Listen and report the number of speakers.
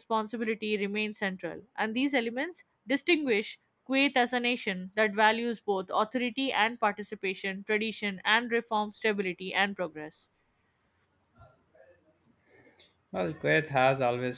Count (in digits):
2